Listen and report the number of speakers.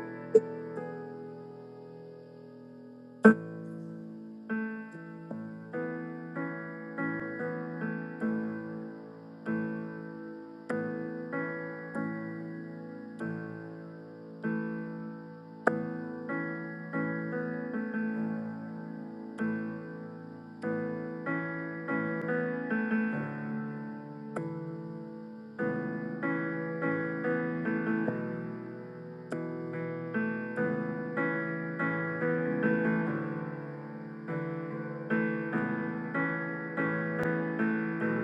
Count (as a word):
zero